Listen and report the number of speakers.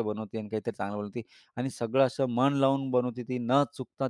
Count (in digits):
1